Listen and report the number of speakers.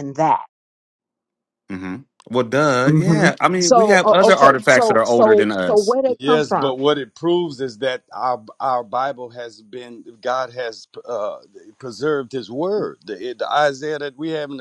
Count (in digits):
3